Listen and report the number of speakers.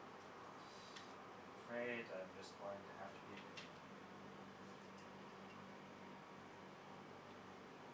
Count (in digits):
1